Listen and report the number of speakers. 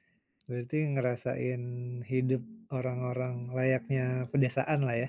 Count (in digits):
1